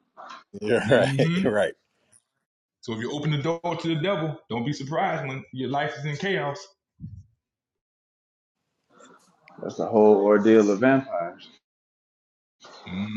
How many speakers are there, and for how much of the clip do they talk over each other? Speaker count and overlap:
3, about 5%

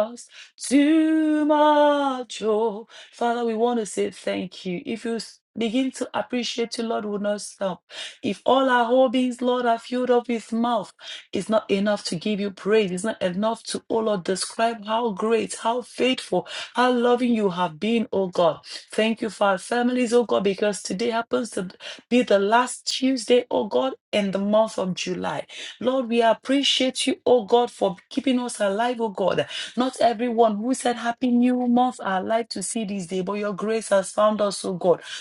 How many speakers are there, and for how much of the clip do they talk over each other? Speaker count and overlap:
1, no overlap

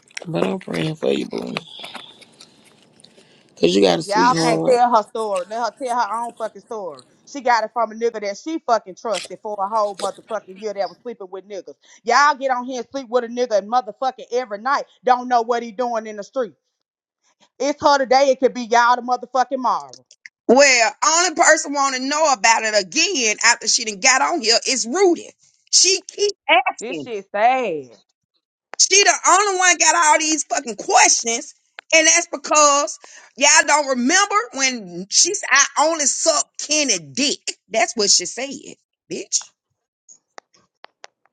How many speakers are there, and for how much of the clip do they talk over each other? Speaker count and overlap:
3, about 3%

